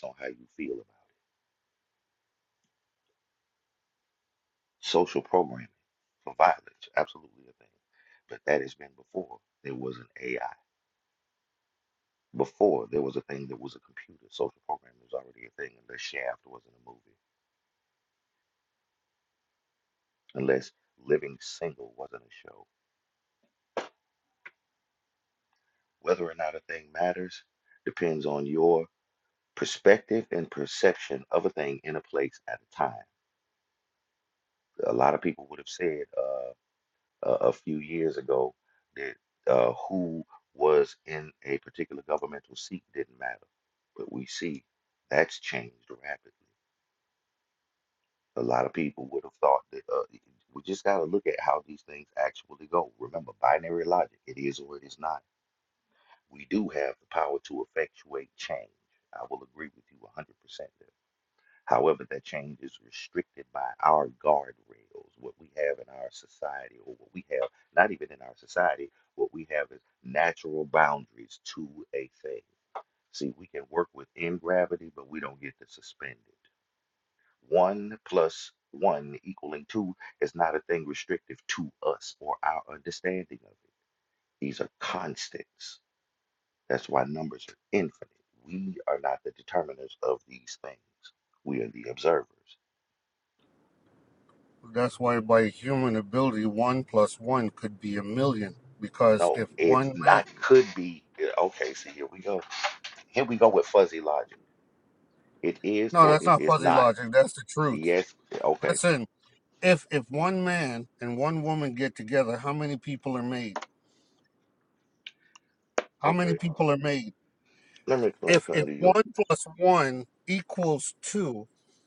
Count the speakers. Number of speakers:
2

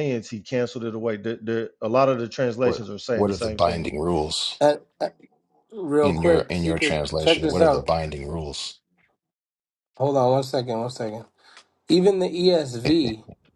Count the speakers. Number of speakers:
3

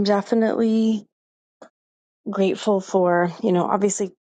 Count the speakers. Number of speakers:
1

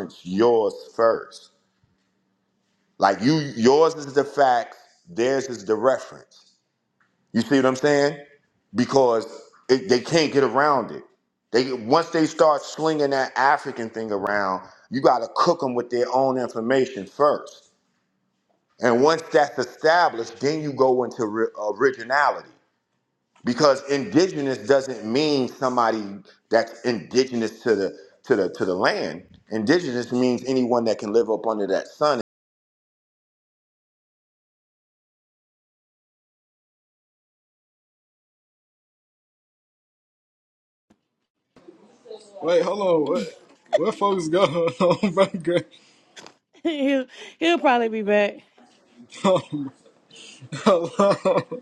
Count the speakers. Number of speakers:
3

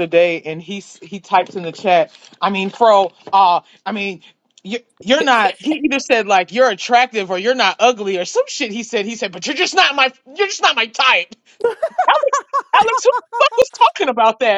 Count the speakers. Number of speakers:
1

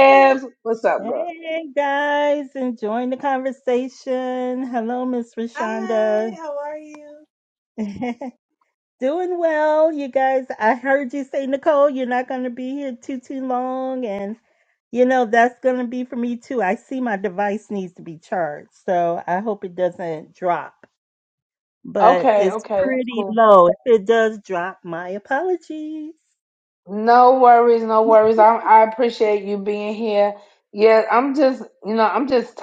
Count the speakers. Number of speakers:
3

